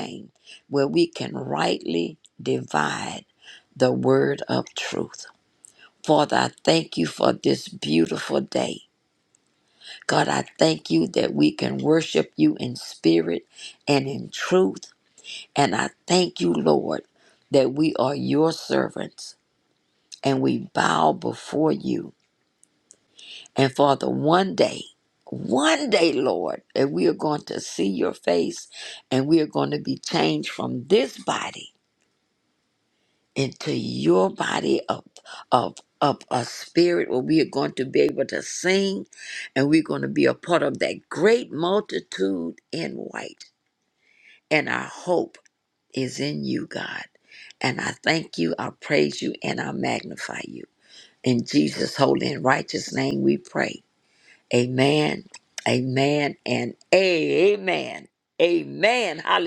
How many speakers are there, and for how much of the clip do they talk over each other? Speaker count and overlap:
1, no overlap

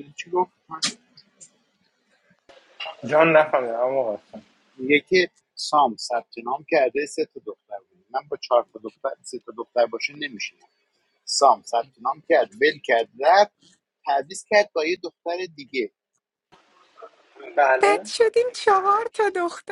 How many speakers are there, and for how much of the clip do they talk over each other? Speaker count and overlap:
3, about 1%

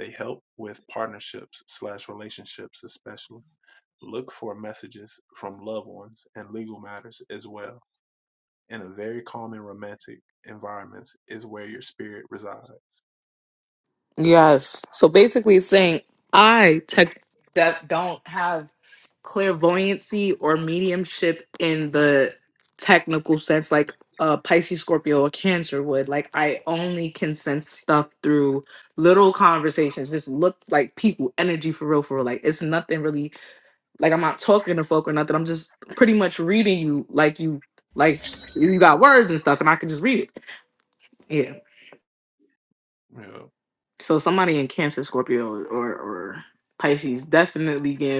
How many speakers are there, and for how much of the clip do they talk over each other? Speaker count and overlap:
2, no overlap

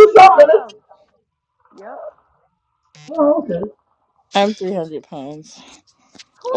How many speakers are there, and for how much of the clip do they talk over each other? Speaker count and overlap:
3, about 9%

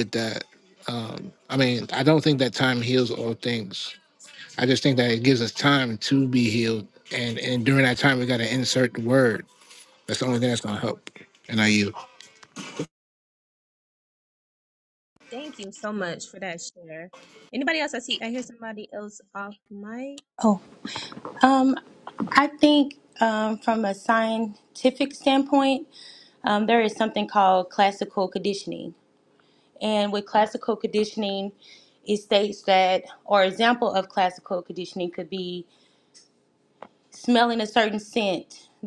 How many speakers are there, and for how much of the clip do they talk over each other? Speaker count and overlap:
3, no overlap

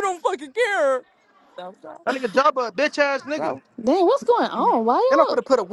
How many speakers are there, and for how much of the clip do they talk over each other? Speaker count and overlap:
3, about 10%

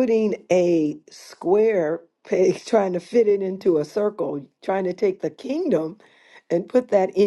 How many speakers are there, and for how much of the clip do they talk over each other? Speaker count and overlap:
1, no overlap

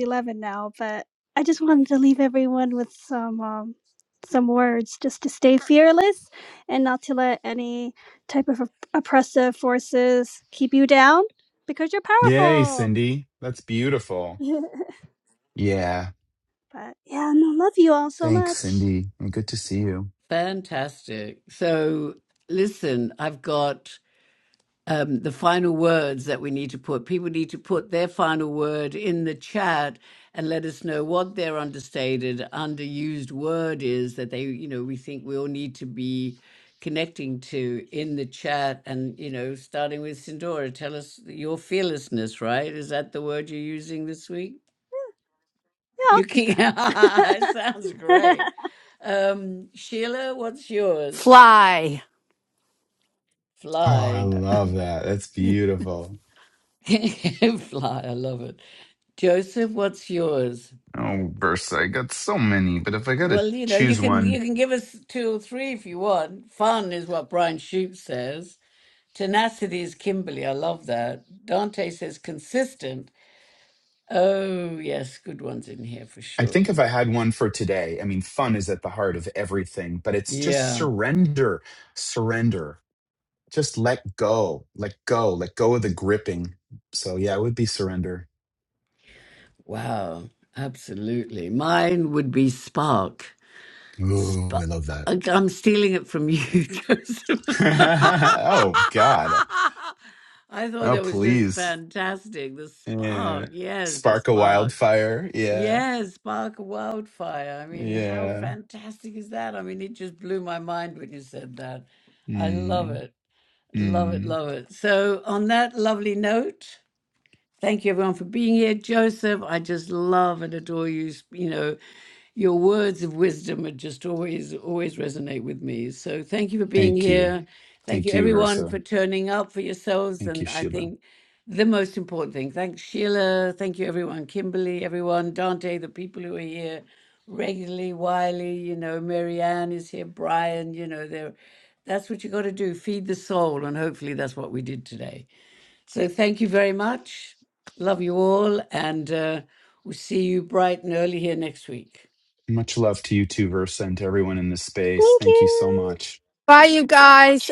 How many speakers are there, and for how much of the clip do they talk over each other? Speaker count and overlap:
4, about 8%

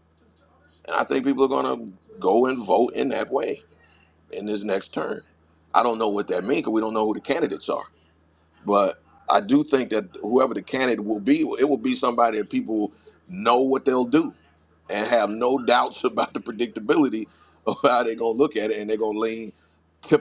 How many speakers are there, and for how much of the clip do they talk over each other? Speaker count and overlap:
1, no overlap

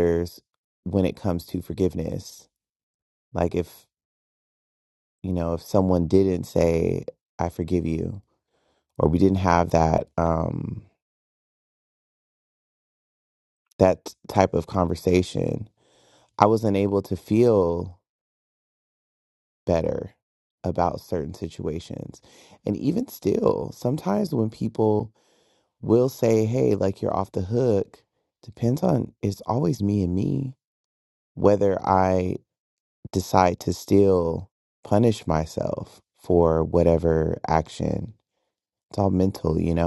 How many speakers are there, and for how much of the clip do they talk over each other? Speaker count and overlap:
1, no overlap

